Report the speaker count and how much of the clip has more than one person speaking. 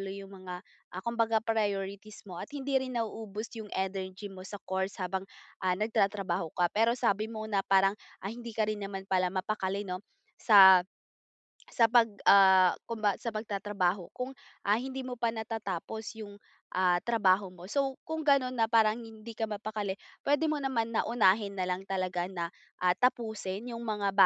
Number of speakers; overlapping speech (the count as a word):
one, no overlap